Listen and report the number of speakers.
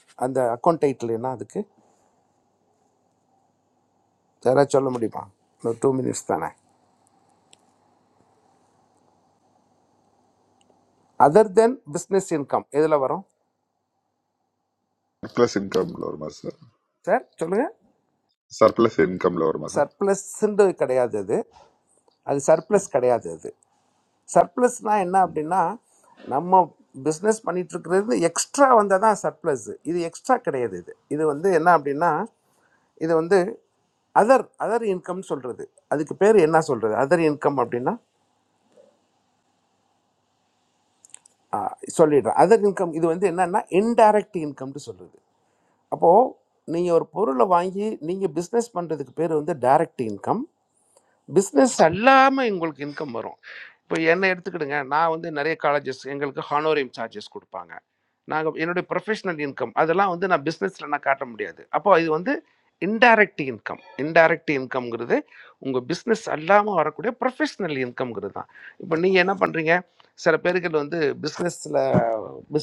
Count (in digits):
2